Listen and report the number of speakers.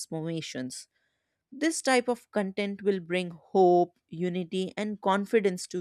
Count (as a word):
one